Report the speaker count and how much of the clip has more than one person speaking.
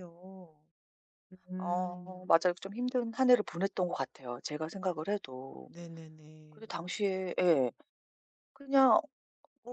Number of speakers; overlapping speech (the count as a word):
two, about 6%